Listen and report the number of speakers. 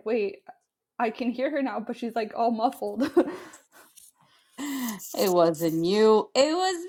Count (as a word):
two